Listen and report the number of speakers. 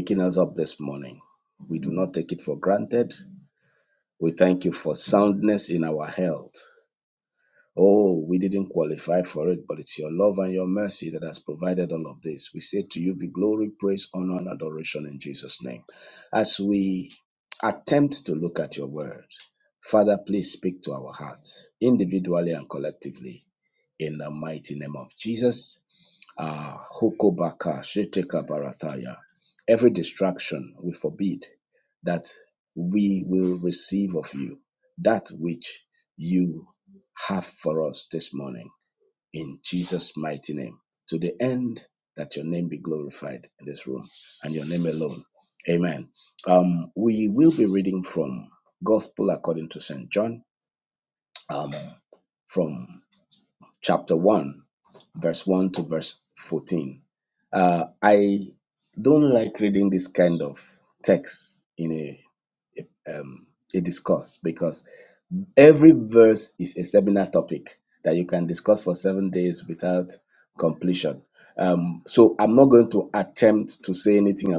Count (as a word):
one